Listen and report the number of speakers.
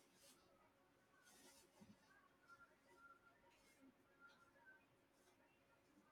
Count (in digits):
0